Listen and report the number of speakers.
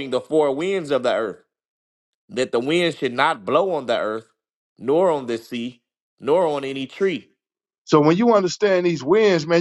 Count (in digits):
2